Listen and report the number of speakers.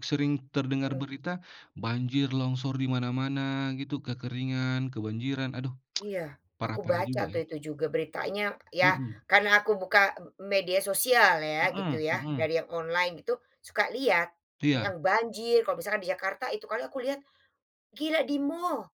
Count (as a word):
two